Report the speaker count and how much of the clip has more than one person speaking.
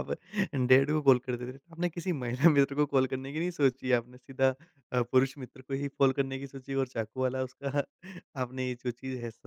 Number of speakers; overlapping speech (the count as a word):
one, no overlap